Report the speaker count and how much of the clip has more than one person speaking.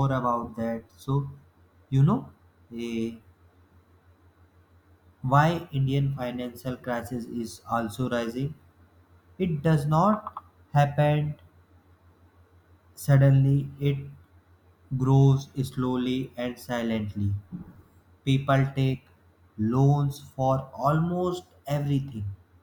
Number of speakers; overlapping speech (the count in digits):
1, no overlap